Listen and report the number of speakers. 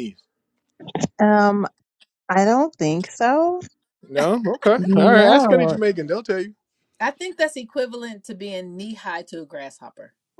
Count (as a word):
three